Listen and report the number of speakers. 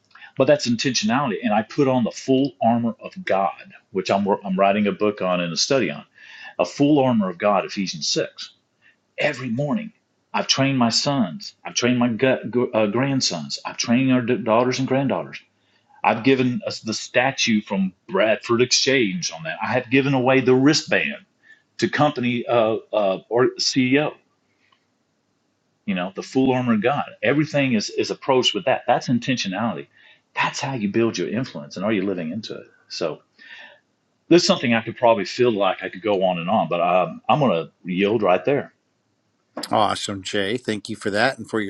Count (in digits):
2